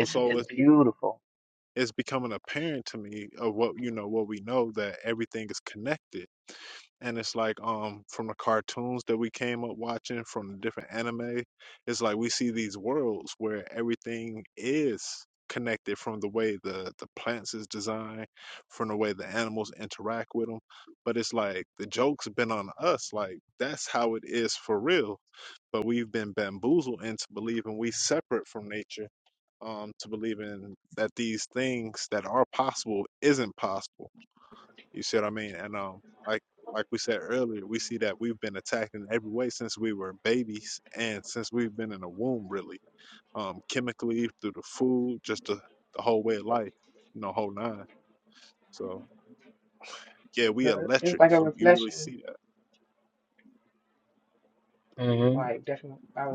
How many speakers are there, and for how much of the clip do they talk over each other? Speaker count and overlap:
3, about 4%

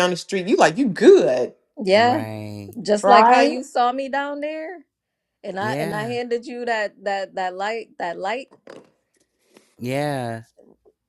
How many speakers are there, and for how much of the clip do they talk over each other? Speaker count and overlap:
3, about 13%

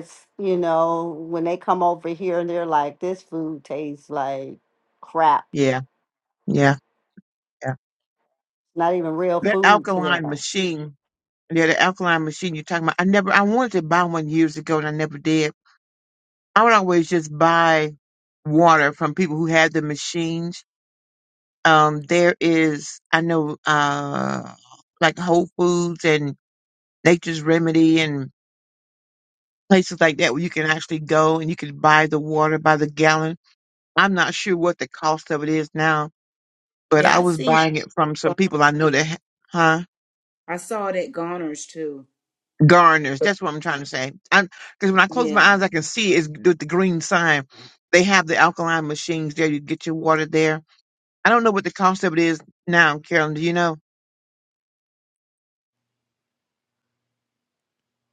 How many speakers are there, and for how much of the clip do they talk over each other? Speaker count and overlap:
3, about 3%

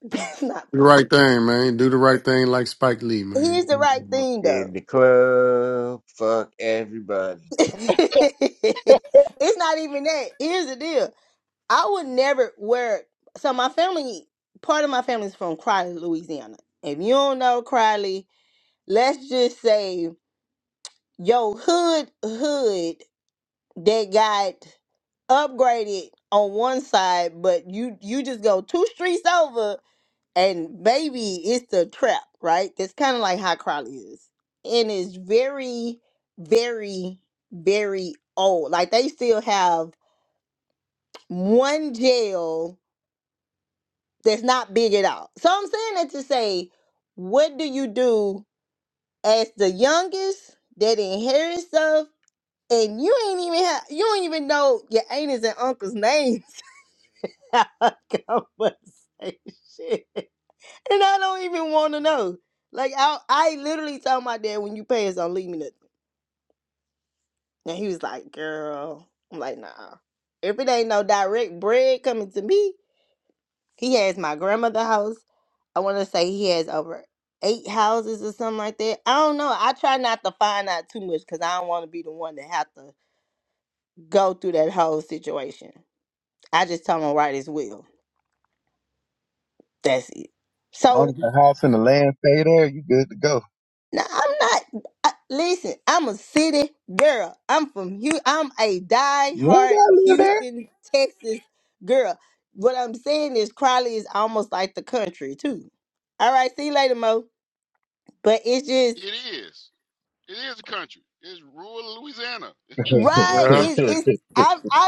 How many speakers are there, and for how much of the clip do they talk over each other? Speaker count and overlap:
5, about 3%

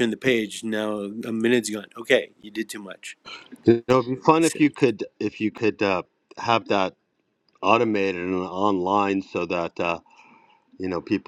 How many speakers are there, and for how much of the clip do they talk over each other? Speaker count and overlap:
2, about 2%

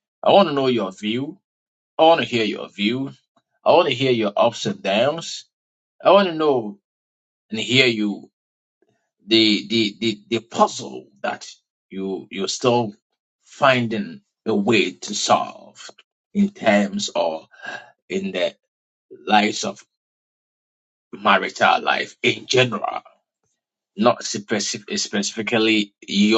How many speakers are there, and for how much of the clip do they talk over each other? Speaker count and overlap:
1, no overlap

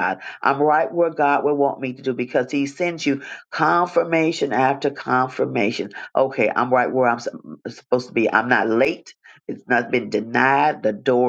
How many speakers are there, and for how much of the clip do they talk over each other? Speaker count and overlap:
1, no overlap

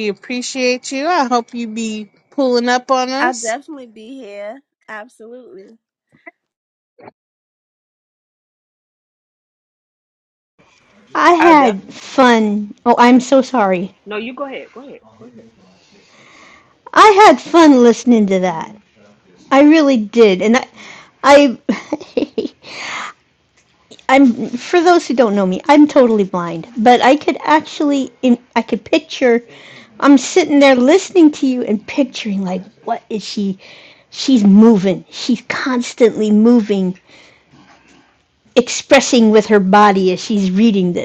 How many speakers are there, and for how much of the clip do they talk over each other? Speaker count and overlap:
4, about 1%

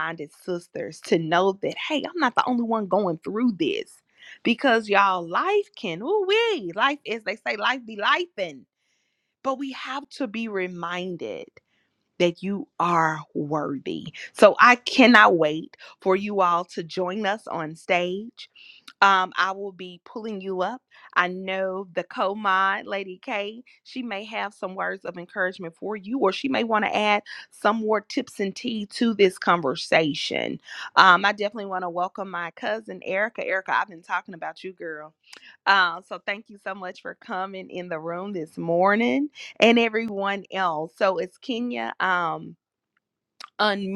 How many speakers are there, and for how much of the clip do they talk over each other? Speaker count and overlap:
1, no overlap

